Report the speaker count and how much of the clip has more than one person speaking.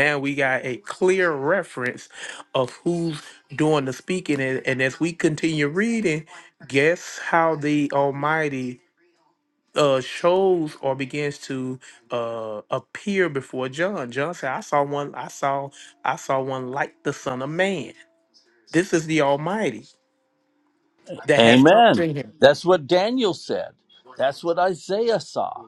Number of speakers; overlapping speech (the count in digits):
2, about 3%